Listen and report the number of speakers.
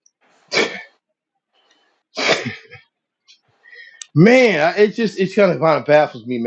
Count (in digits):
1